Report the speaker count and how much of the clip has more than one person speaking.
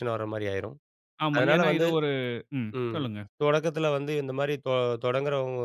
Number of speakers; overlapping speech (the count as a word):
two, about 16%